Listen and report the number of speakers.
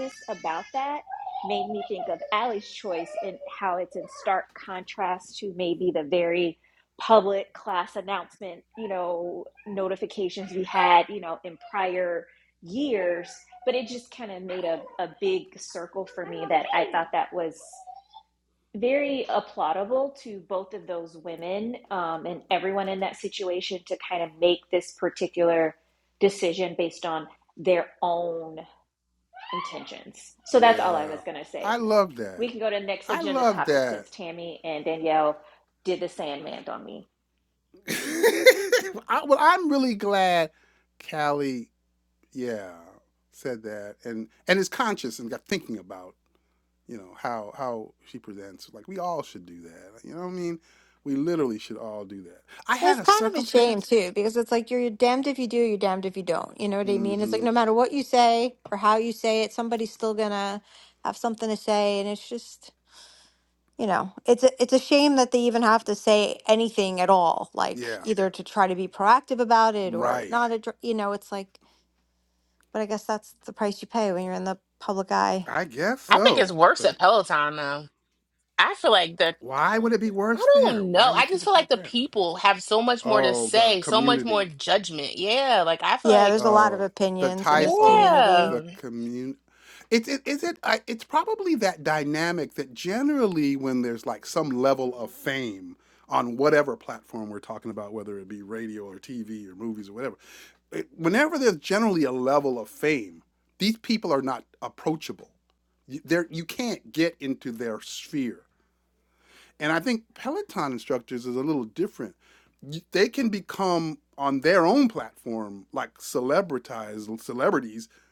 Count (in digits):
4